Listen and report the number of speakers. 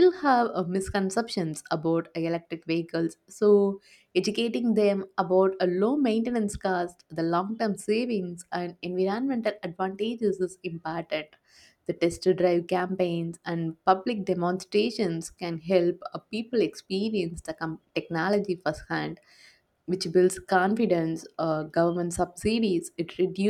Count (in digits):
1